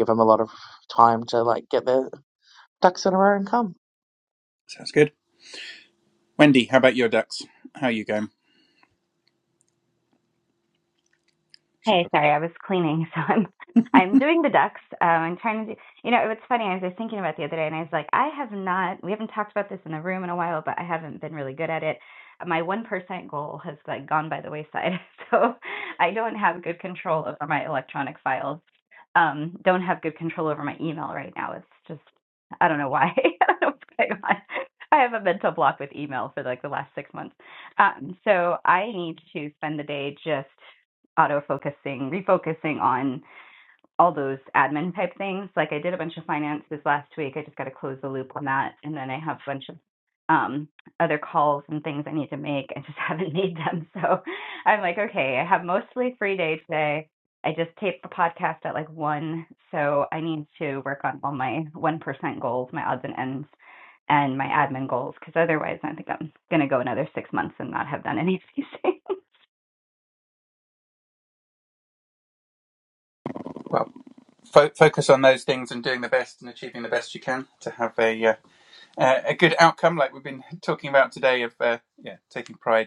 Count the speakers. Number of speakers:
3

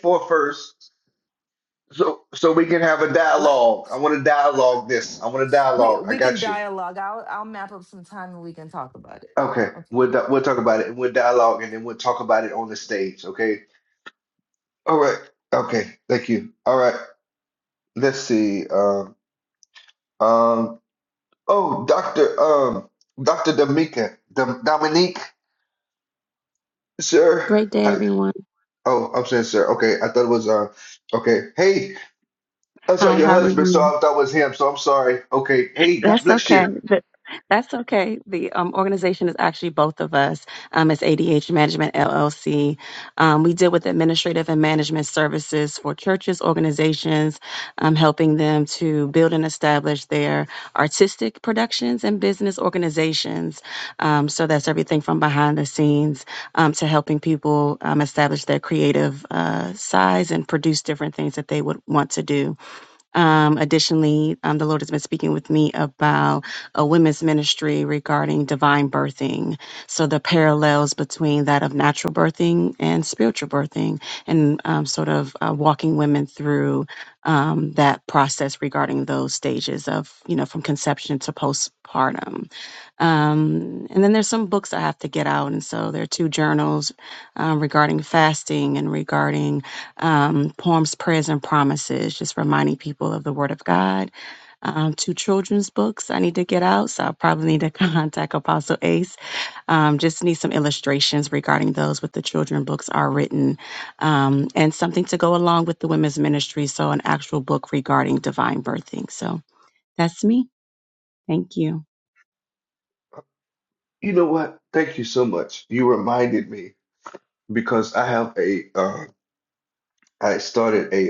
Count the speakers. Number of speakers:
3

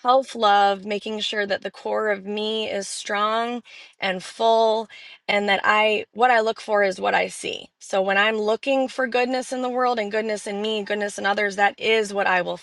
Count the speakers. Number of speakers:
1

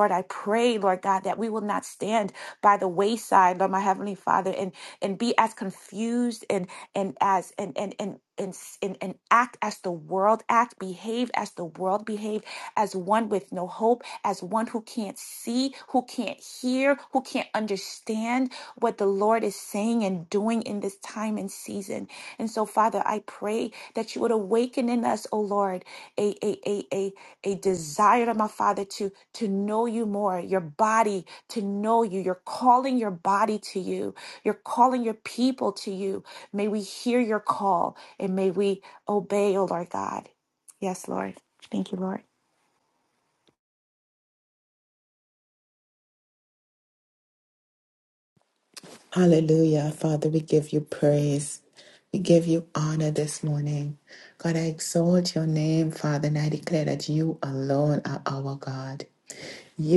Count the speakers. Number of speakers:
2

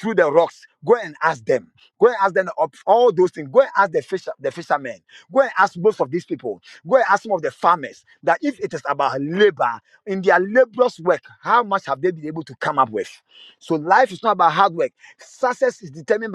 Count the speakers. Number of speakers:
1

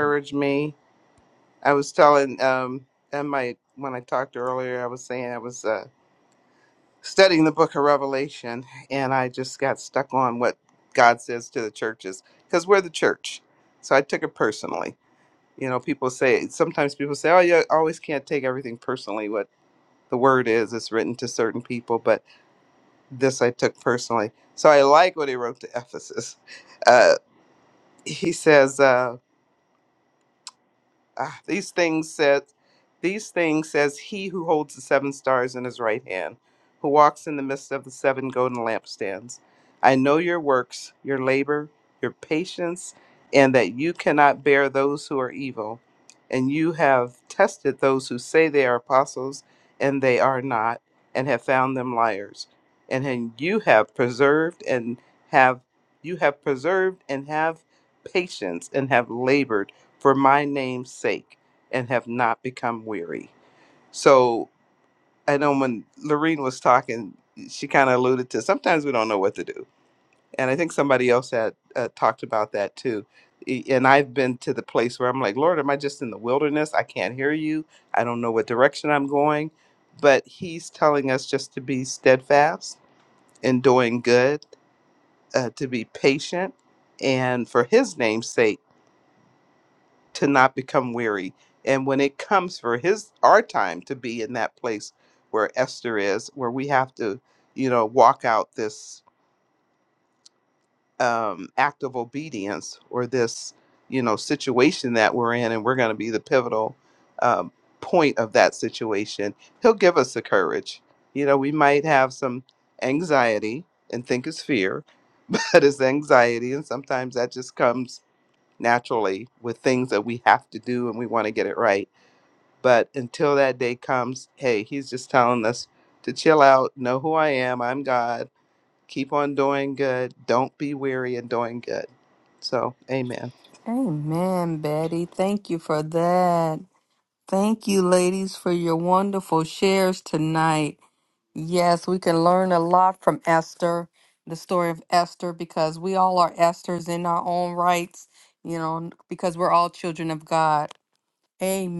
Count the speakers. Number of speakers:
2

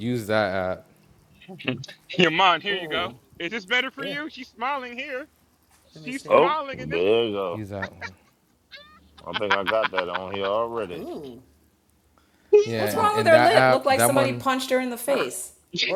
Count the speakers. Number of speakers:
4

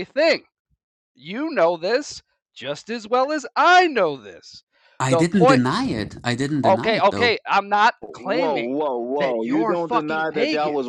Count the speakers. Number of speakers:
3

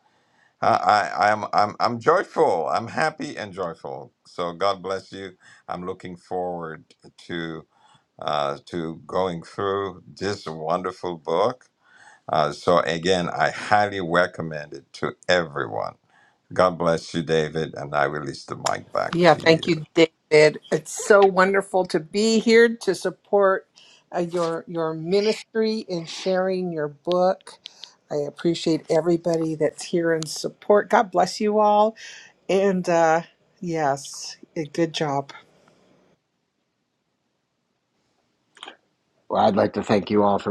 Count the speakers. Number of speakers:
3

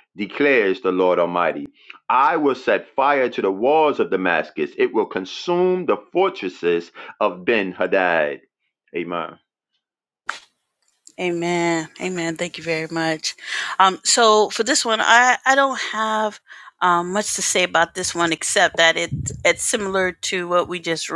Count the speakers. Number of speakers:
2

